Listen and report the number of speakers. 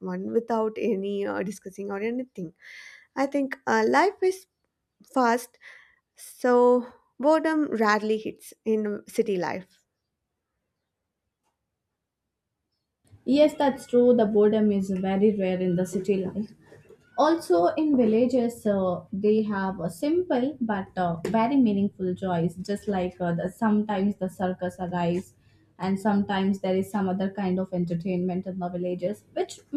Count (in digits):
2